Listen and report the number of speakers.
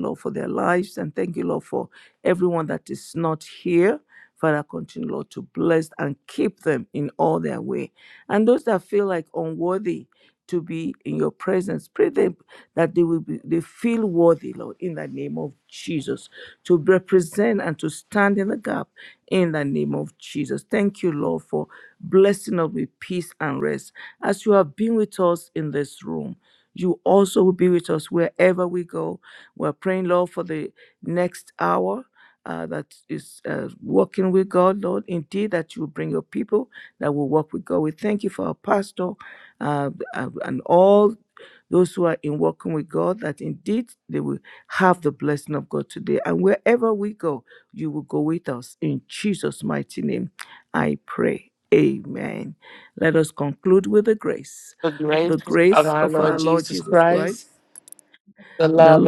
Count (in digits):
2